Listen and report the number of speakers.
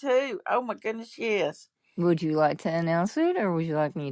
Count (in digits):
2